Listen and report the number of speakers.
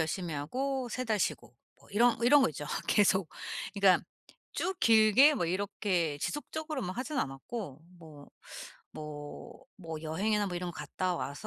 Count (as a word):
one